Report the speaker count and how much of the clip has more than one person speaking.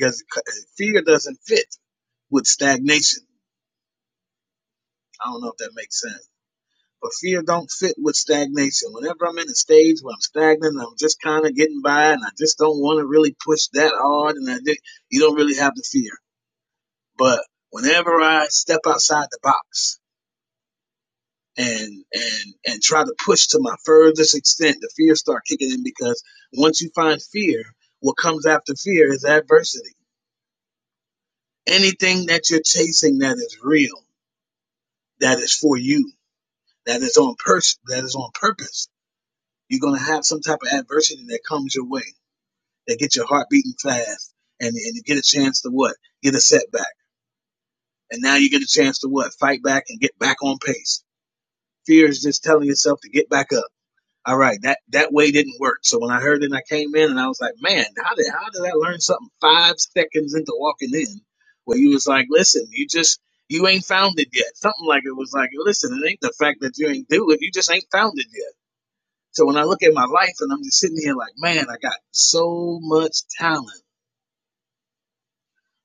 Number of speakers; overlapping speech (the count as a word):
one, no overlap